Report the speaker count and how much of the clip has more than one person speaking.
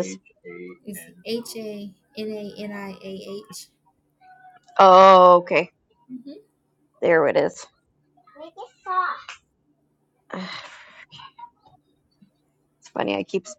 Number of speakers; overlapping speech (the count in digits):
2, no overlap